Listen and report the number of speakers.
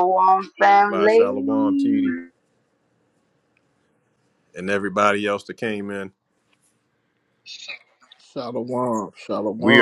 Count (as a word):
three